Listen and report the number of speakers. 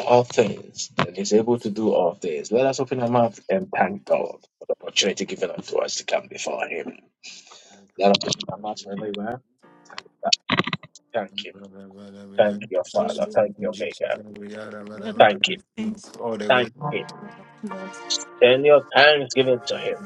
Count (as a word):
three